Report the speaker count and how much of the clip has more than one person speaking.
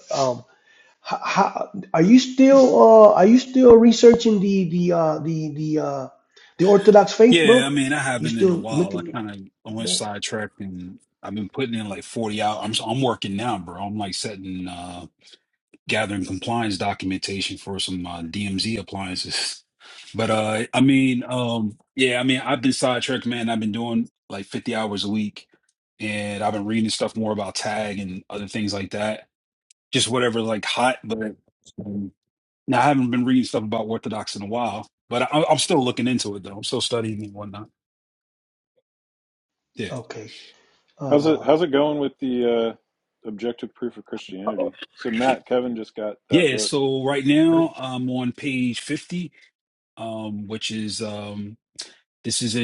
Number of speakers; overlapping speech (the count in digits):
3, about 5%